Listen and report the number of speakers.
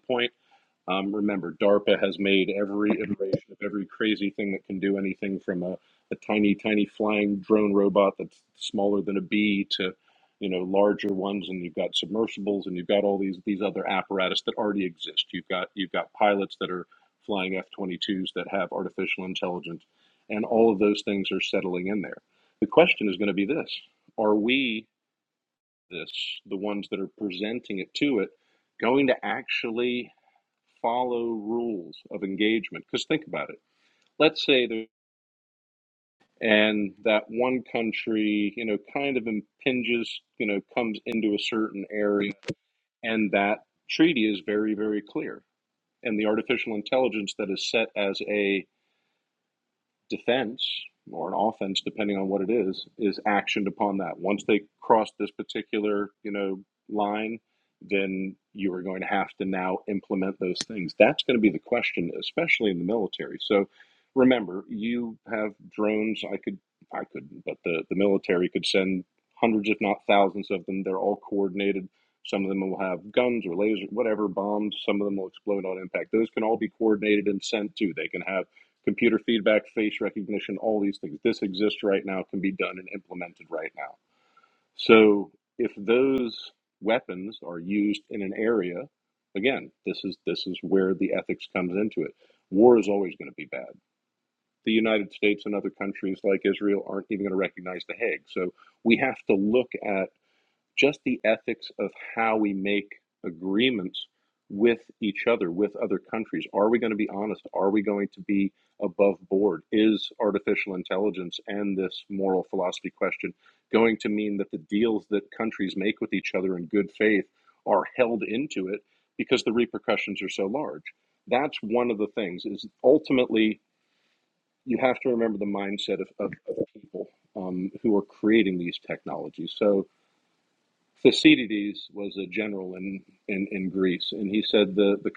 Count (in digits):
1